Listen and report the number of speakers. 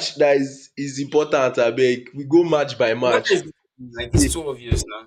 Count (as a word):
two